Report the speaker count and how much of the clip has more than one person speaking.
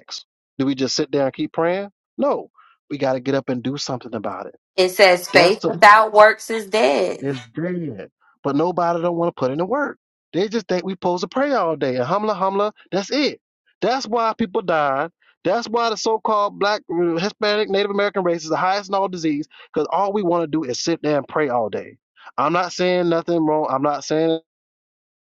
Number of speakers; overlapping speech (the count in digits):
2, about 2%